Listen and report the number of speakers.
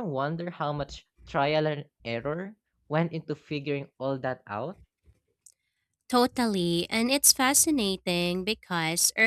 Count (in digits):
2